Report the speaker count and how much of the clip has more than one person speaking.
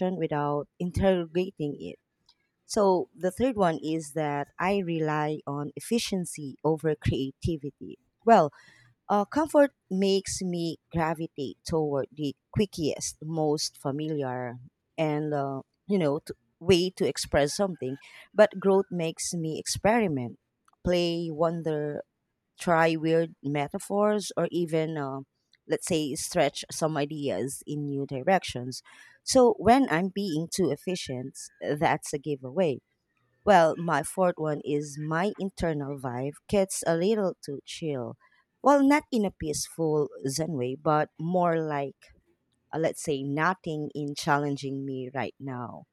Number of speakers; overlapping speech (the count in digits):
1, no overlap